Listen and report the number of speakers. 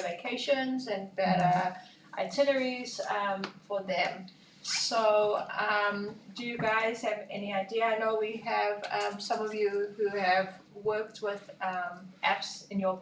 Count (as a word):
one